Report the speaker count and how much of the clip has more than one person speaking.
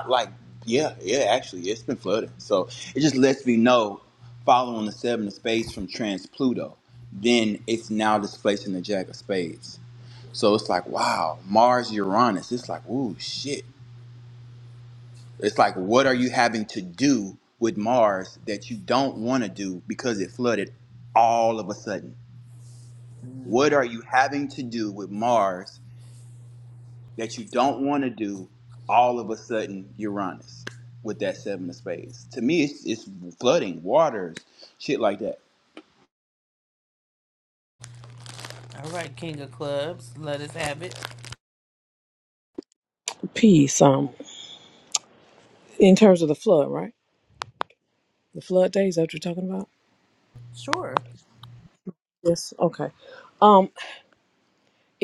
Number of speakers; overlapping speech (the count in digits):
3, no overlap